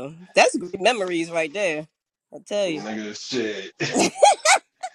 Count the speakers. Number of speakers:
2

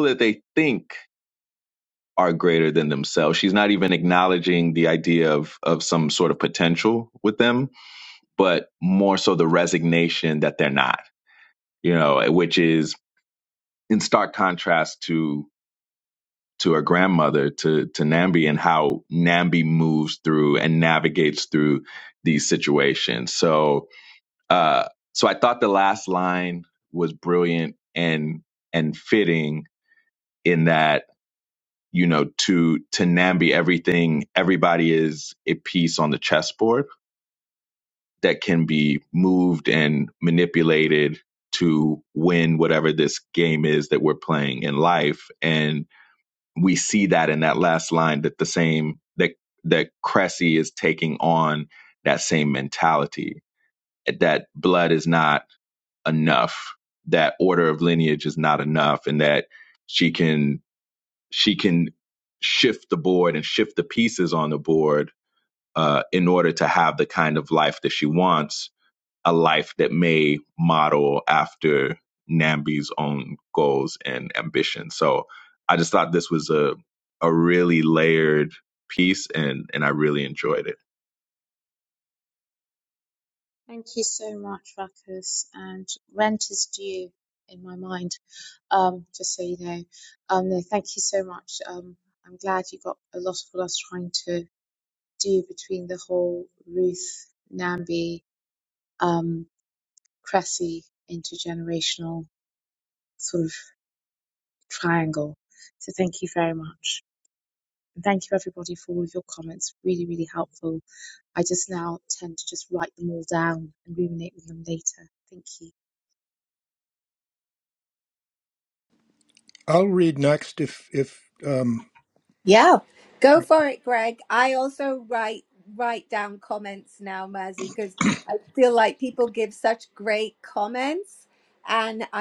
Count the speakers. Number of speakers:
4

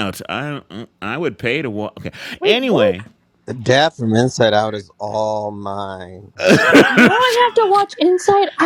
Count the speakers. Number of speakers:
3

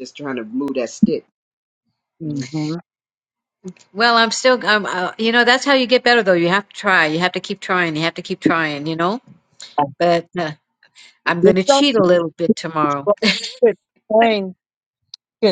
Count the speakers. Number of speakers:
3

